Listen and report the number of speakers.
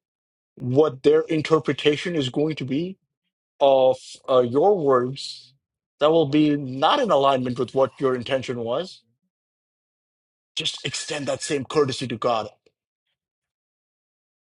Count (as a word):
one